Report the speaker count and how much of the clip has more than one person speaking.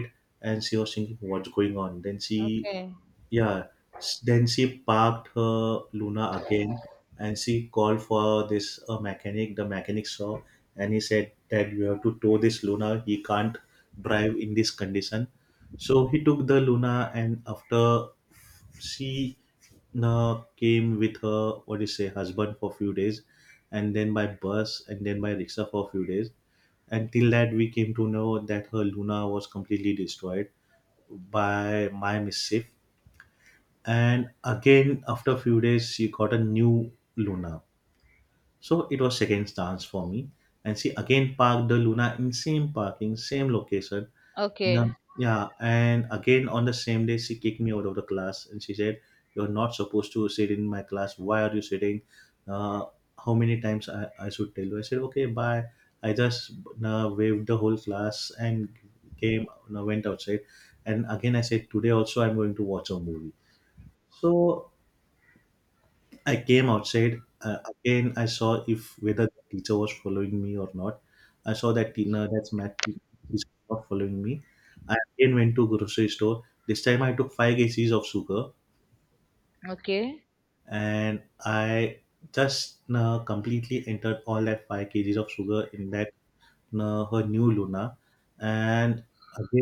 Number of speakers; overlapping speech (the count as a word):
two, about 1%